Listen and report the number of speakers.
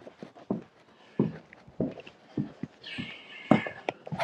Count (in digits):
0